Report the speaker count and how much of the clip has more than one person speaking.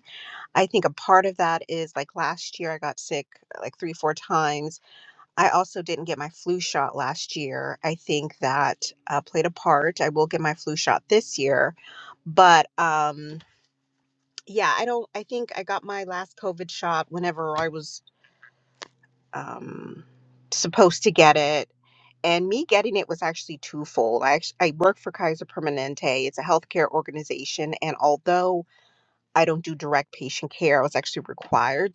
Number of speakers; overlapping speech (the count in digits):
1, no overlap